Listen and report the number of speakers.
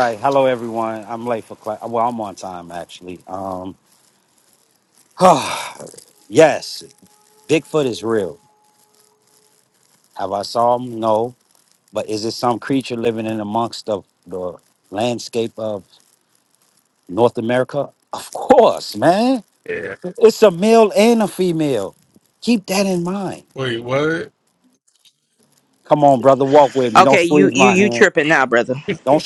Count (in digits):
3